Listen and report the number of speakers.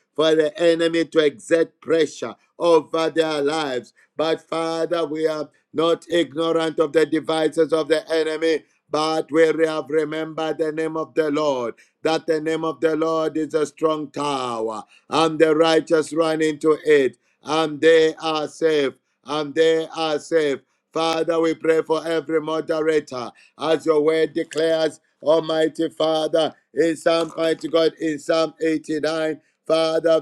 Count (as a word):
one